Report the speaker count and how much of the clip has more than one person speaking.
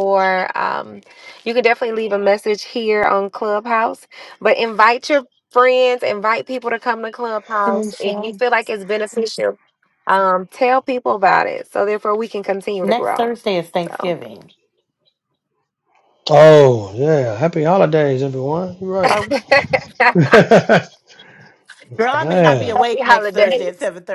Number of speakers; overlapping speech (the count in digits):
3, about 13%